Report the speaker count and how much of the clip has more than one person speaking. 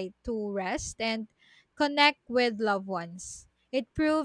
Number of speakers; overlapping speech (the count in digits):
1, no overlap